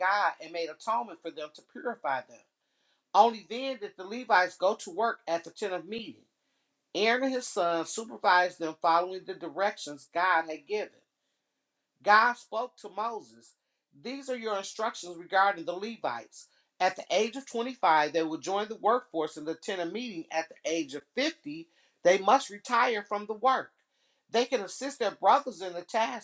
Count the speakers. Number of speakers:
1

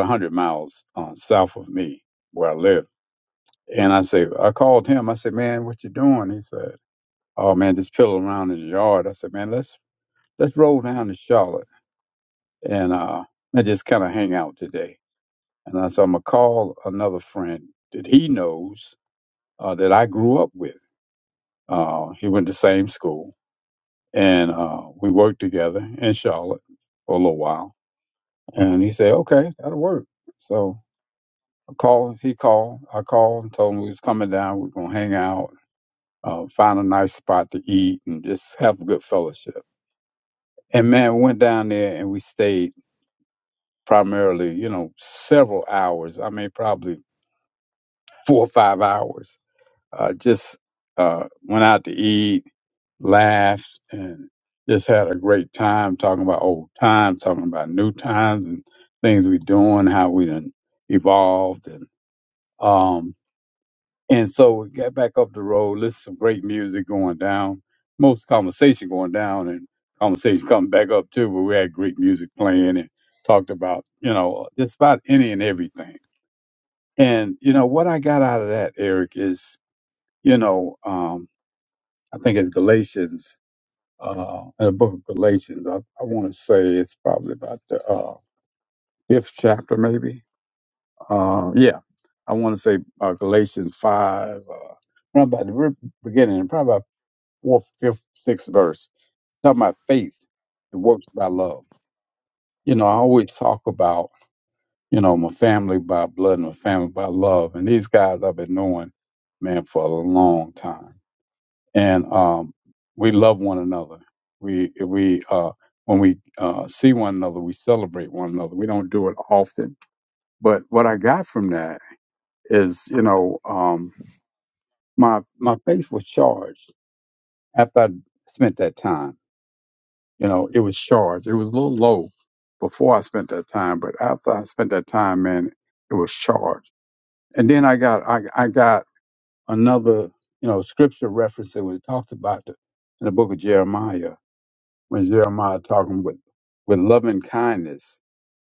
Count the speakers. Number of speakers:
1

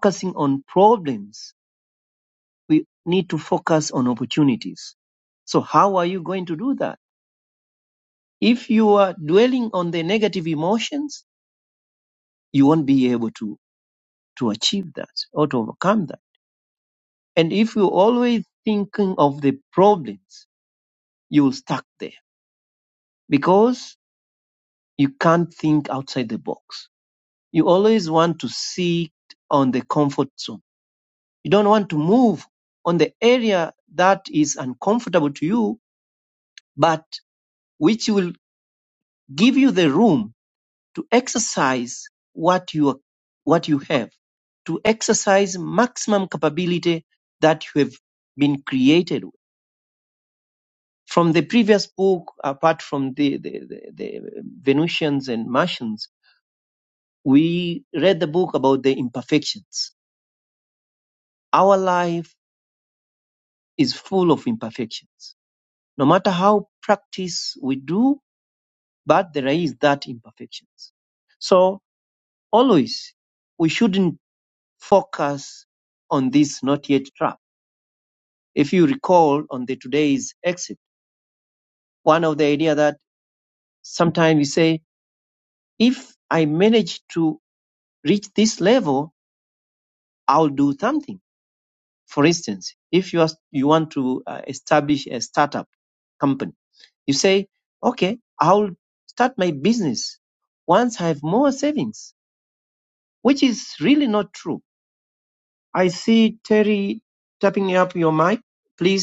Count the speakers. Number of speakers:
1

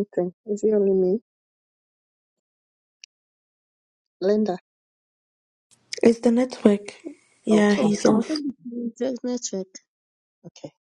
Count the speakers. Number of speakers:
3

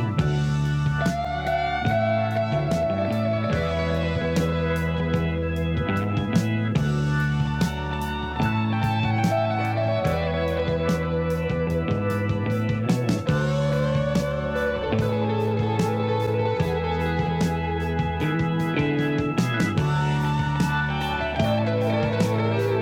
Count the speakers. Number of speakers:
0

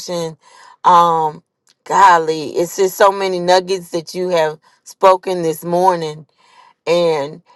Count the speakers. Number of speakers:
1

